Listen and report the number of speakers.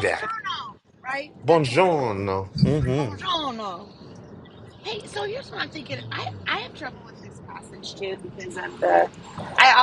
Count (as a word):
two